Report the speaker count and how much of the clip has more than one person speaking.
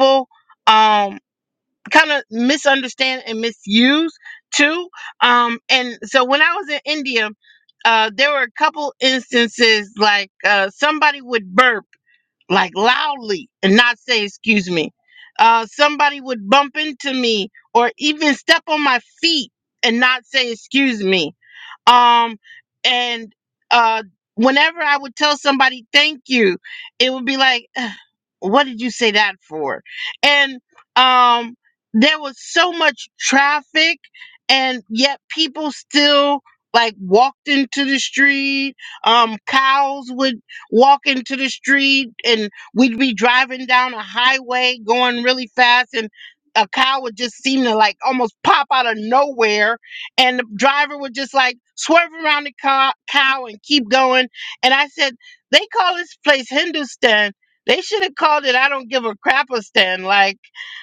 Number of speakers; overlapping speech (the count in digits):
1, no overlap